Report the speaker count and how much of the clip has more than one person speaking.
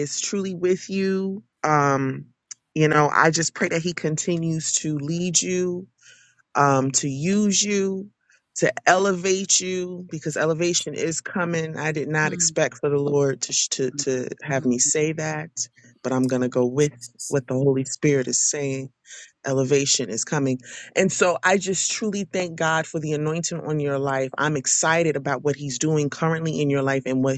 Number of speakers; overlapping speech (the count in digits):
1, no overlap